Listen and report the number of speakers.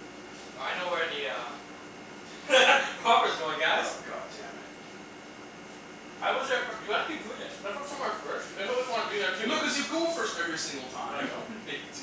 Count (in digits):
3